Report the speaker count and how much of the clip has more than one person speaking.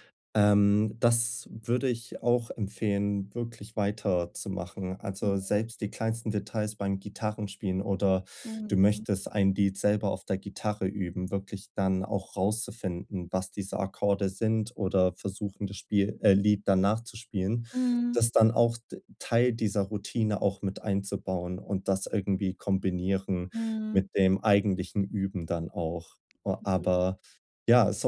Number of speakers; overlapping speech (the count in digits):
2, about 4%